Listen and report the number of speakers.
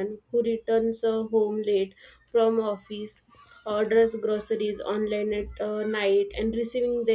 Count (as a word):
one